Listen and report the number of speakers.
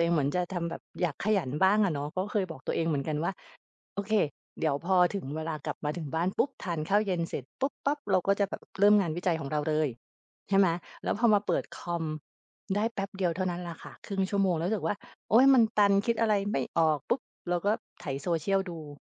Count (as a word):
one